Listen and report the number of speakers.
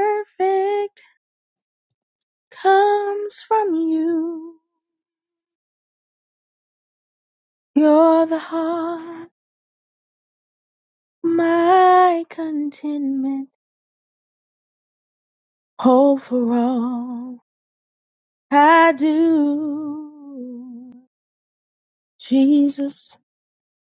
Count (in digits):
1